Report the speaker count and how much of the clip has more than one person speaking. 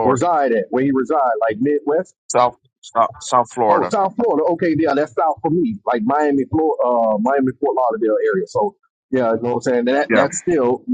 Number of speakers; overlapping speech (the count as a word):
two, about 7%